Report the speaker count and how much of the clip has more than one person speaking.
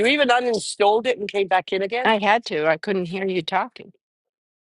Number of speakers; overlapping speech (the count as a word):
two, about 2%